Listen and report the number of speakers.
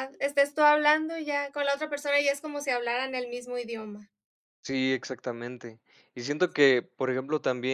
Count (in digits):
2